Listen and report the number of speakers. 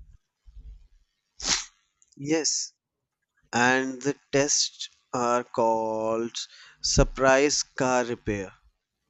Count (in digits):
1